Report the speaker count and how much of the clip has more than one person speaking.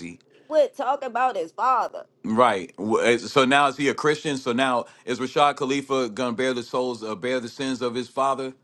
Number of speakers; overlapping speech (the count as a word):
two, no overlap